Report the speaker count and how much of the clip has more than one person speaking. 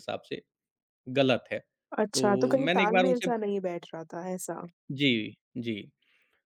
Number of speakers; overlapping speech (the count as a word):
two, about 18%